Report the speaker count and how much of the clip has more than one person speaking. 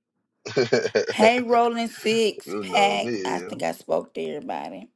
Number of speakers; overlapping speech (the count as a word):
two, about 15%